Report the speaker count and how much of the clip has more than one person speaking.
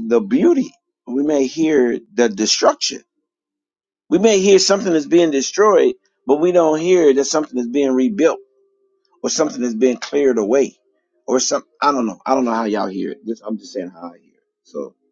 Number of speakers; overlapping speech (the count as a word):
one, no overlap